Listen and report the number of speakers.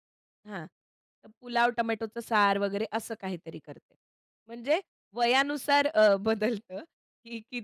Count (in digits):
1